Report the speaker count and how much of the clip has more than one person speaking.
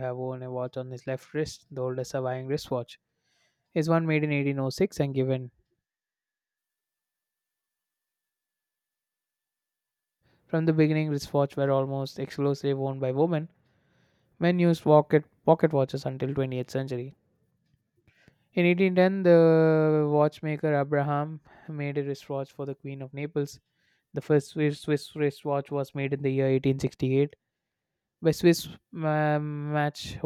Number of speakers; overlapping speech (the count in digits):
1, no overlap